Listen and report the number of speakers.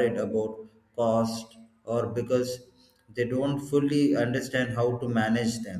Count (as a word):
one